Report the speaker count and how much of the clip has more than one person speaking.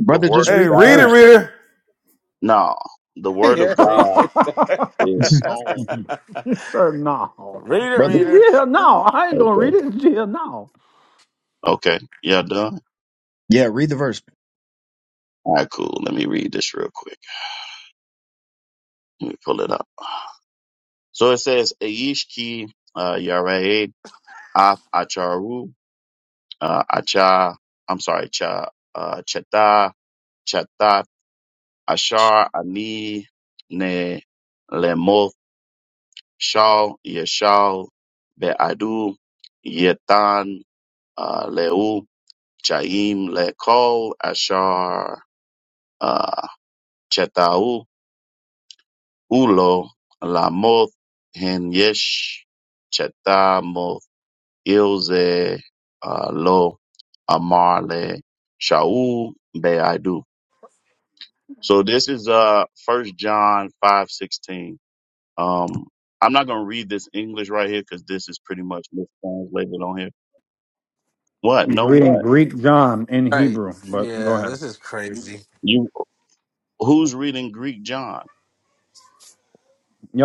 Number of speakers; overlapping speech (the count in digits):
5, about 5%